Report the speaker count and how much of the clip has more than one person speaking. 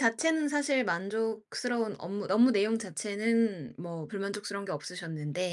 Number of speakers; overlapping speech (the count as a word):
one, no overlap